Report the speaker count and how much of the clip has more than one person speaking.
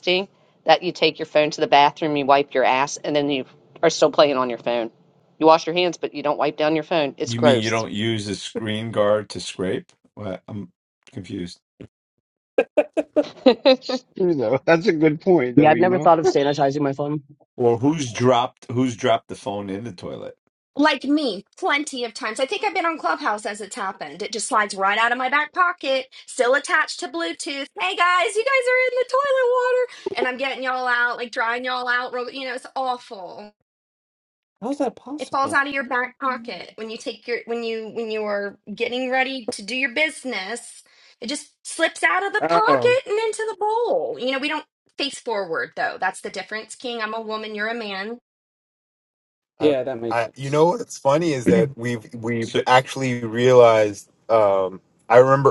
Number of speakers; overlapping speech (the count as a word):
seven, about 5%